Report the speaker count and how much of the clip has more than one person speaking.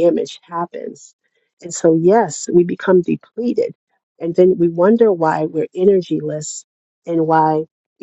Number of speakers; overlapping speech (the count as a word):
one, no overlap